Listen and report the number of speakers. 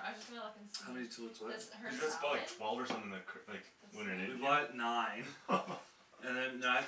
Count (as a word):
three